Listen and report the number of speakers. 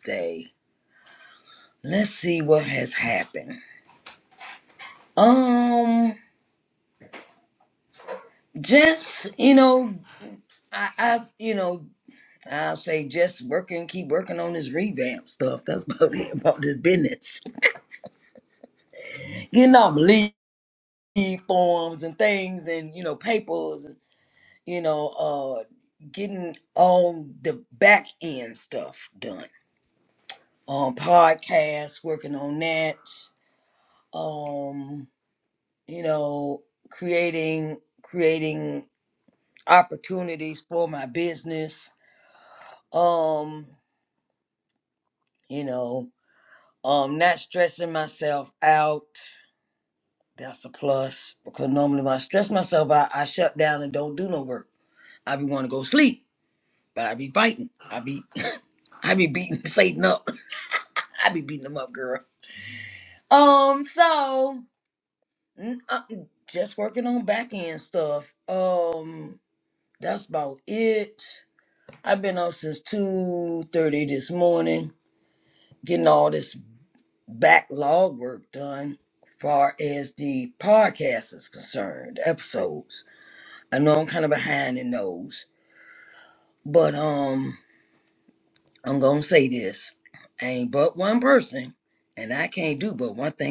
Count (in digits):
1